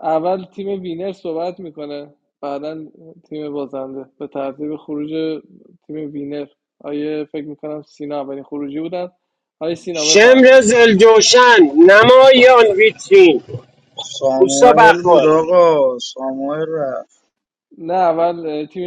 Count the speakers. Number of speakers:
3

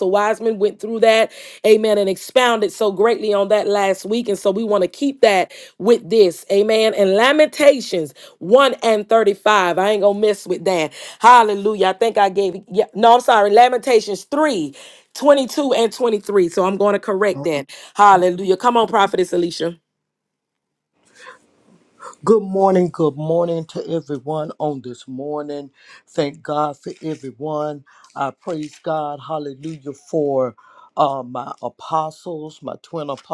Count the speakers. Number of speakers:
2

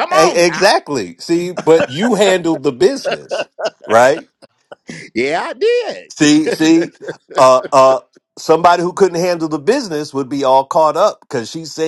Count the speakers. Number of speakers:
2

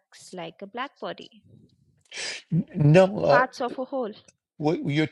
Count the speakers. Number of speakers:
2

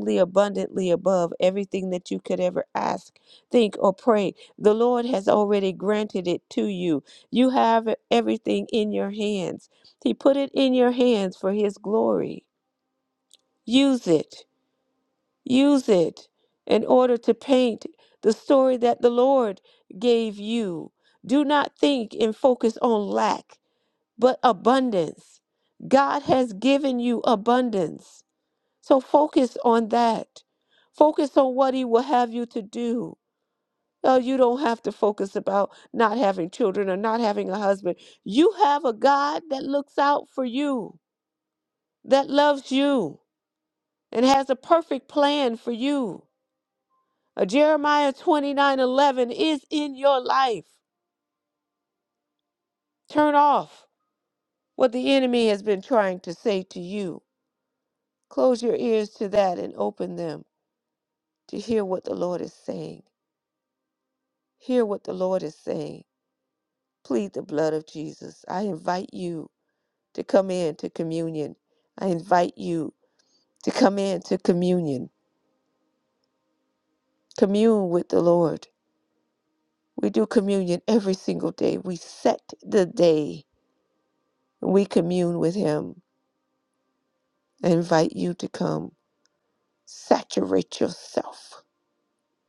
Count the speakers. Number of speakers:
1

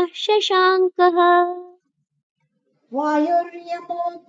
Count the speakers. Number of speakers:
2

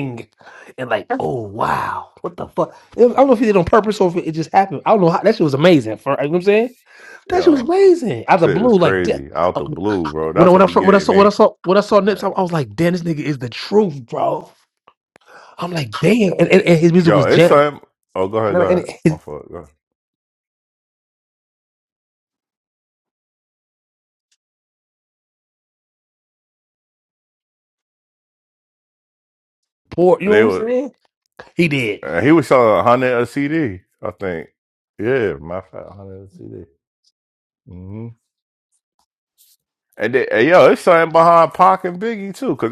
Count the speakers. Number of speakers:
2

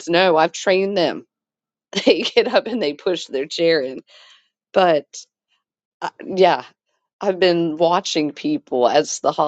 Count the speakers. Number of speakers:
1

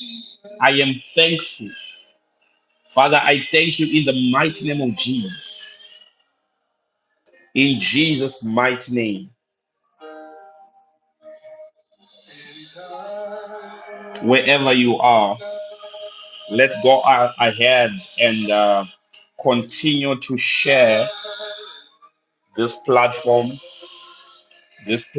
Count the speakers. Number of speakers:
1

